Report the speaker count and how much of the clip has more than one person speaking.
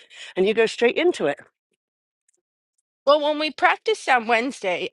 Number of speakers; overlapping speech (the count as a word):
two, no overlap